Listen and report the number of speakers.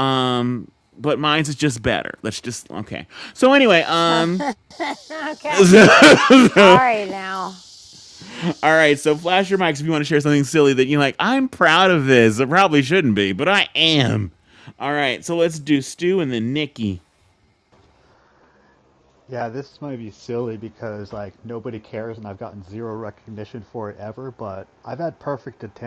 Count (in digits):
3